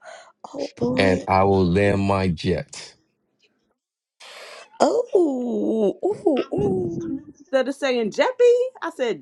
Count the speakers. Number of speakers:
3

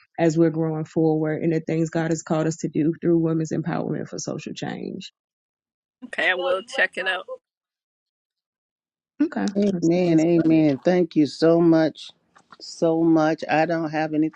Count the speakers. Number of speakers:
3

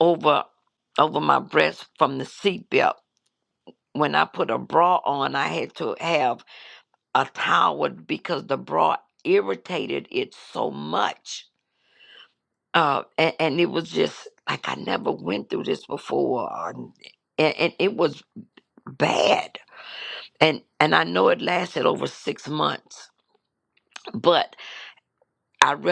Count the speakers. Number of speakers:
1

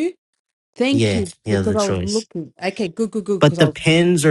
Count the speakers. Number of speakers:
2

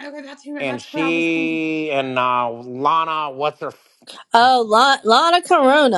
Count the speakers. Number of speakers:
3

